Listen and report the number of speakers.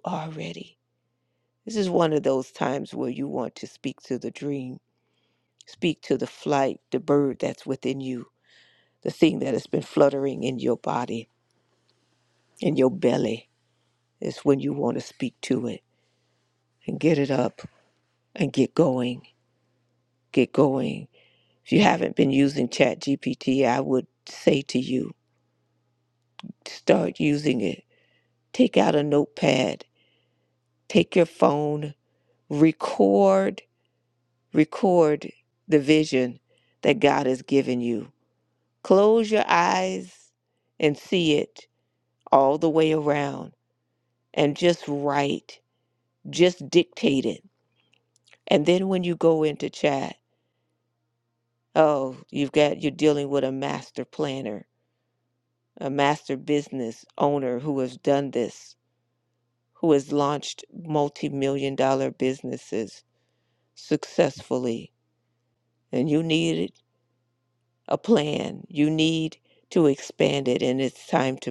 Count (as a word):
one